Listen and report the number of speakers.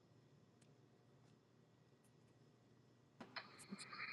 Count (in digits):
0